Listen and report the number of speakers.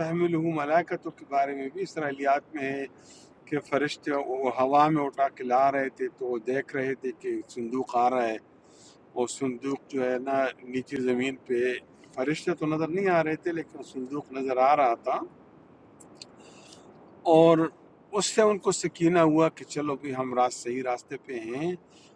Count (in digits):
1